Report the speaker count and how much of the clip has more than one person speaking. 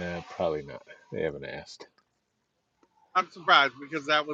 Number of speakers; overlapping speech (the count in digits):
2, no overlap